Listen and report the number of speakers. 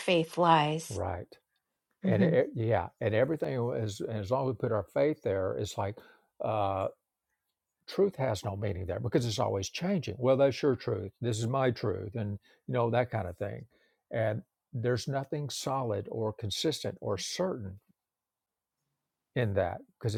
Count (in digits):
2